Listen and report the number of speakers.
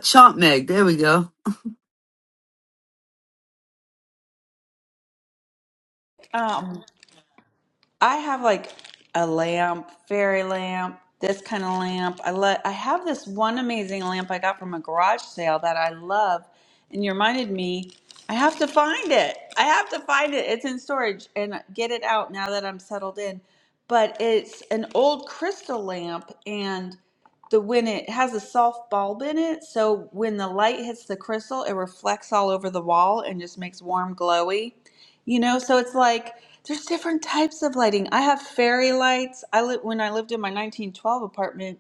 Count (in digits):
2